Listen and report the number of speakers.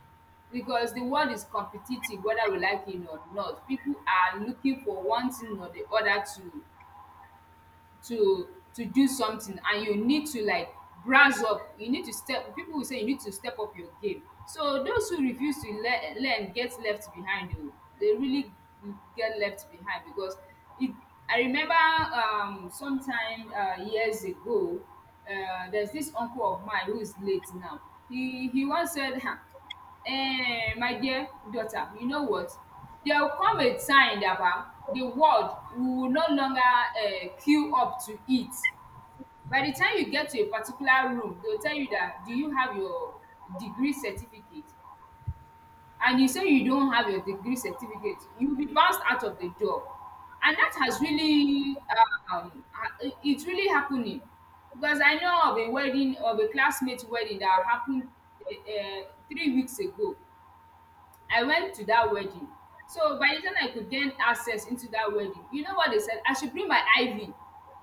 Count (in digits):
1